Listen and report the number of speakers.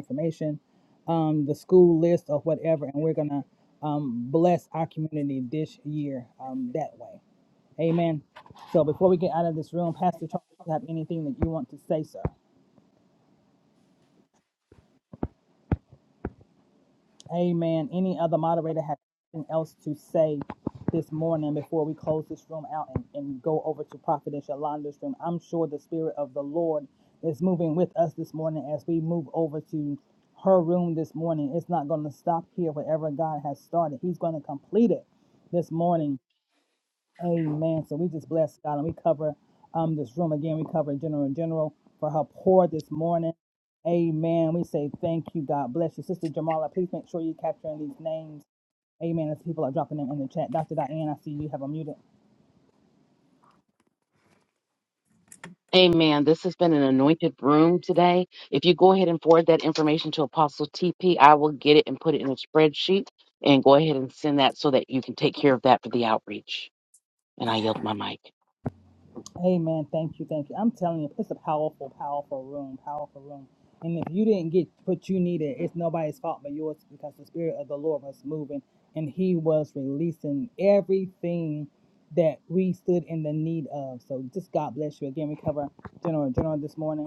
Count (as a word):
two